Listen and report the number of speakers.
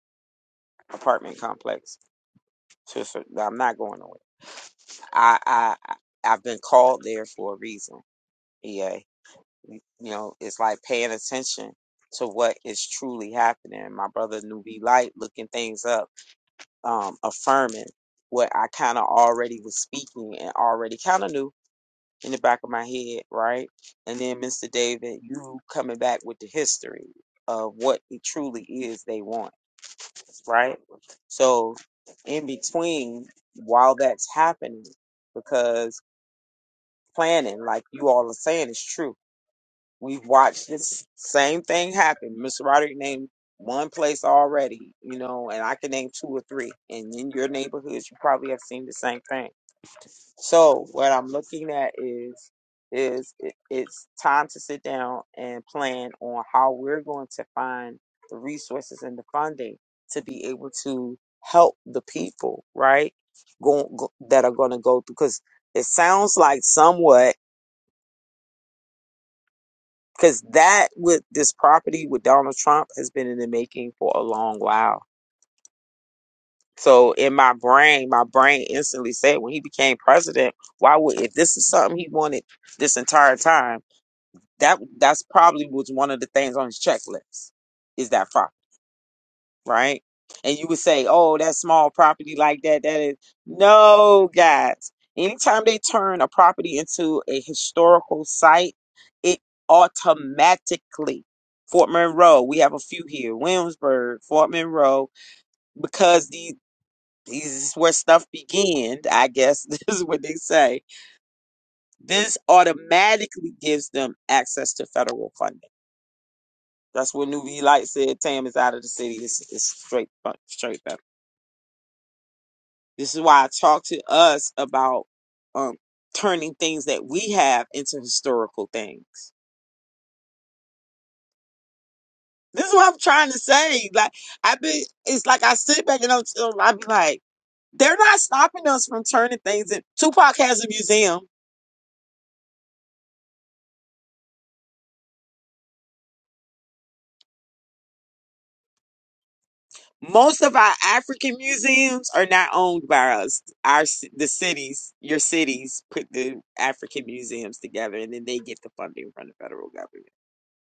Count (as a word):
one